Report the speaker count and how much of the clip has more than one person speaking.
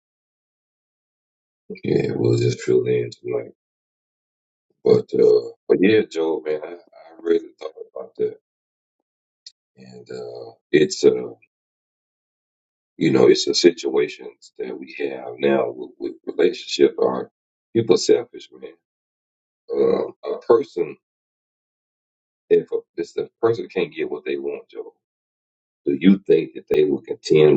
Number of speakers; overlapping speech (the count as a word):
one, no overlap